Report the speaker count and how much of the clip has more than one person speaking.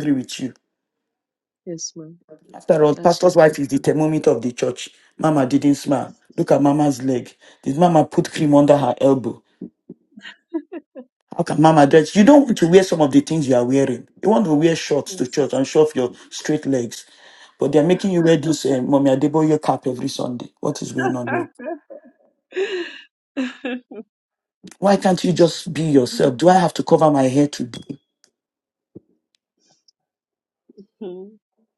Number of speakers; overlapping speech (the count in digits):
2, about 3%